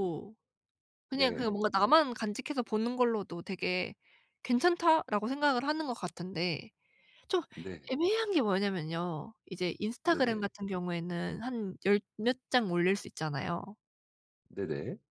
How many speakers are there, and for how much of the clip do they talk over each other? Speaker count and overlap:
2, about 5%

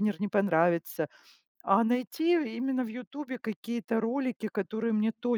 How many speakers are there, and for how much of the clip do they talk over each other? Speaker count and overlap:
1, no overlap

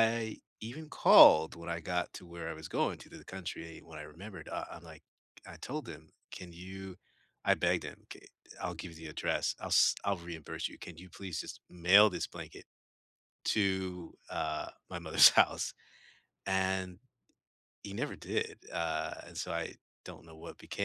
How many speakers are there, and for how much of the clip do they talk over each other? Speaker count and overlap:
1, no overlap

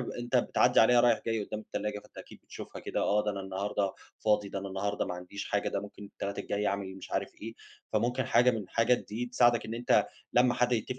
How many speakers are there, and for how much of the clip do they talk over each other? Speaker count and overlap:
1, no overlap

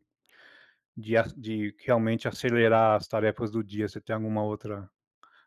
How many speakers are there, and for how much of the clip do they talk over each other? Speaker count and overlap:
1, no overlap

